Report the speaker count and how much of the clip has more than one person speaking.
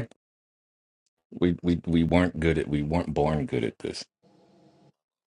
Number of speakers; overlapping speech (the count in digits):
1, no overlap